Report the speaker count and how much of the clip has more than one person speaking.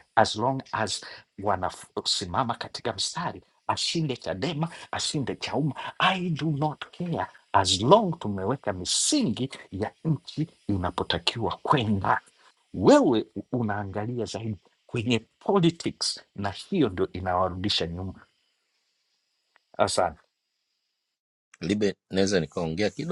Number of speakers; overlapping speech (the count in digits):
2, no overlap